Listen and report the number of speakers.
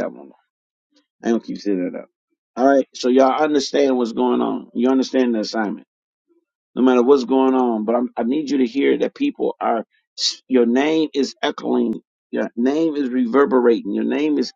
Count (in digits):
1